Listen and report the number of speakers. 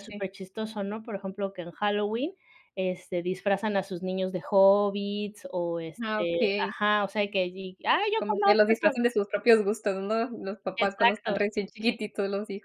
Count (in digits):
2